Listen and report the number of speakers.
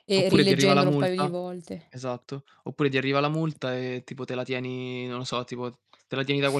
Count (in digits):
2